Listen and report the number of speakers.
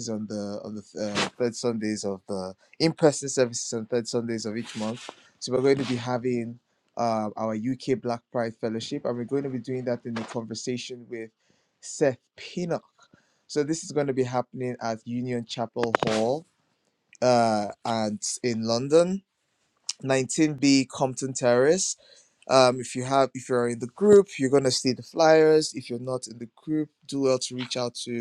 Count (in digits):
1